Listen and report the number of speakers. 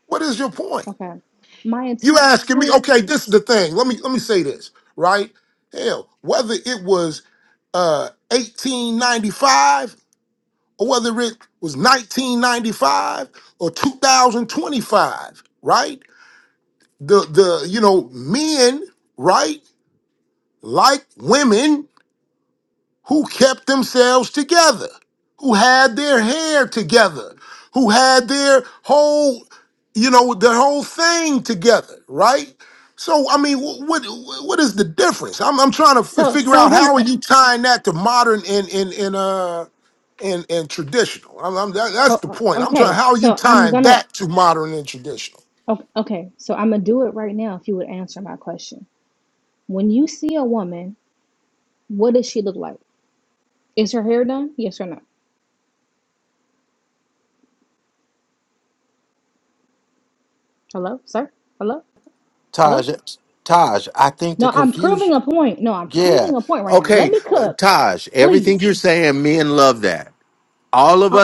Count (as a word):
three